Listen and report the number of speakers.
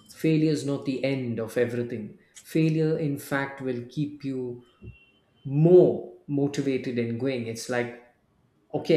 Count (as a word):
one